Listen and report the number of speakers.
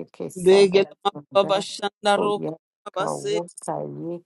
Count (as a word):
two